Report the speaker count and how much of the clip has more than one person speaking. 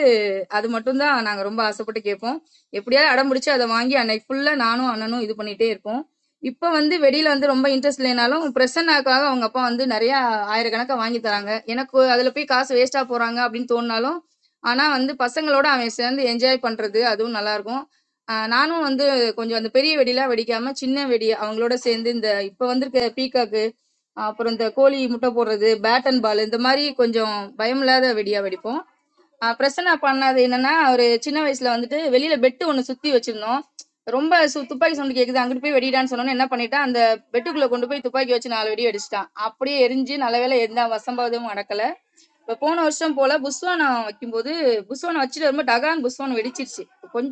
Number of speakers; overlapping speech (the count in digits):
1, no overlap